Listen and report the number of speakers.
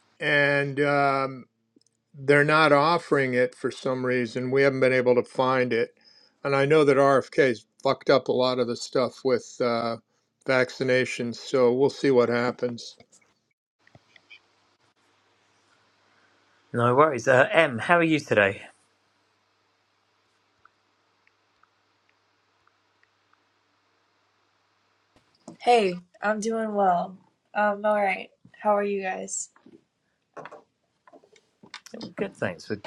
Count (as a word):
three